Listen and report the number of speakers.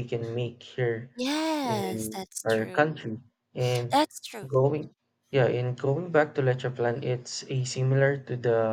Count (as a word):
two